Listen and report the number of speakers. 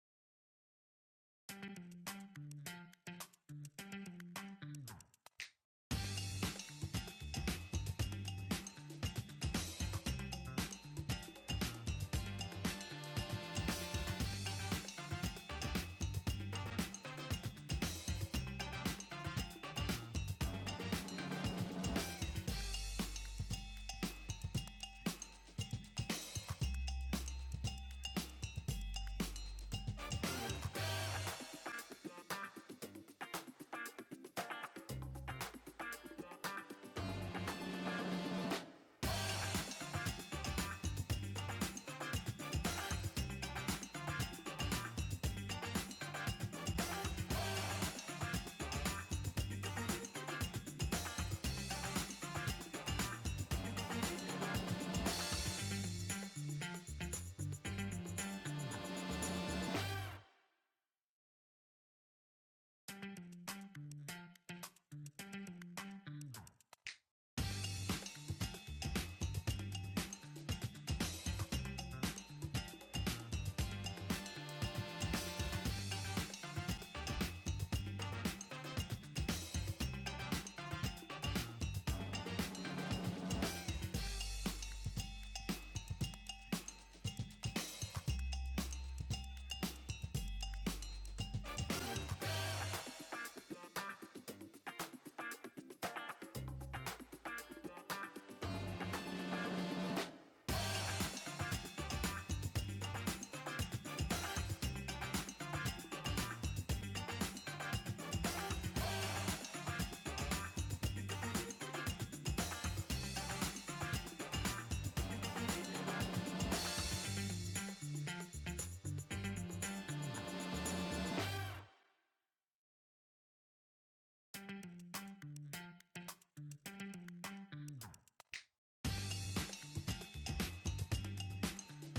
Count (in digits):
0